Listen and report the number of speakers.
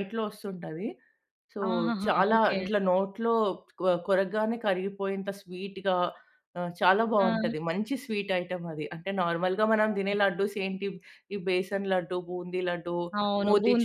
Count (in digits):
2